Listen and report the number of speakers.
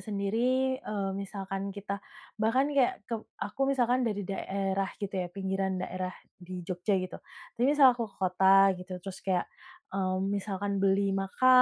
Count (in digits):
1